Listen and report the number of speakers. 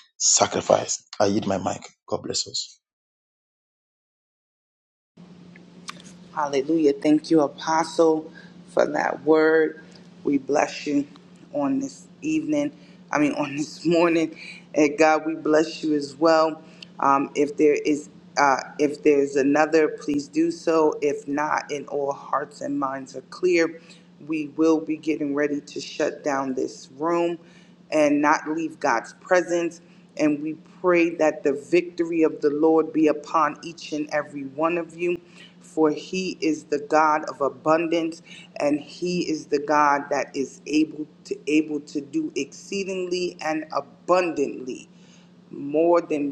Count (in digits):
2